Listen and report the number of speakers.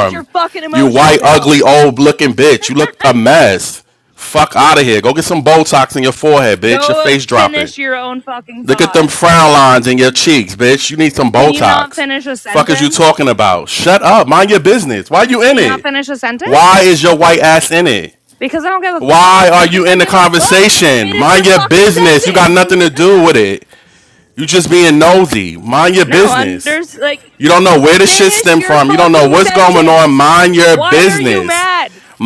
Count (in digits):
2